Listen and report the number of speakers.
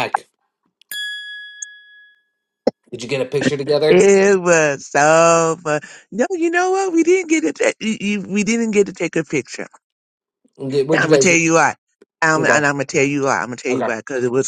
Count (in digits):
2